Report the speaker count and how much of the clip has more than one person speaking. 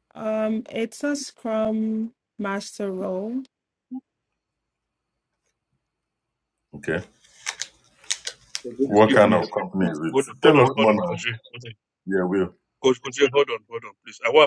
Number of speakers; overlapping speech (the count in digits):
3, about 11%